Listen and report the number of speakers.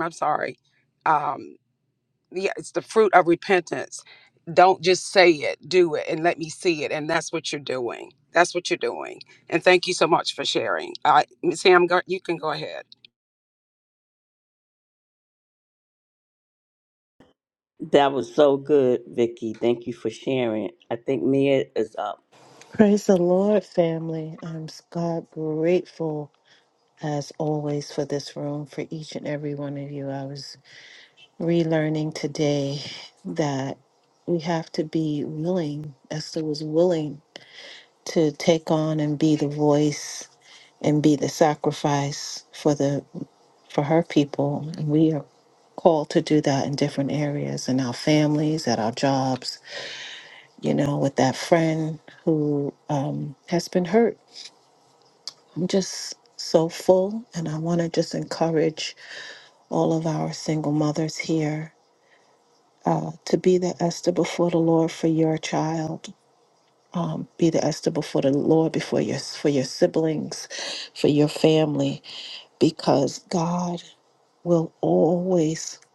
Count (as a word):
three